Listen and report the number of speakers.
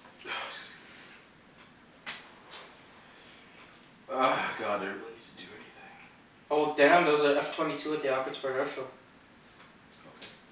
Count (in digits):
2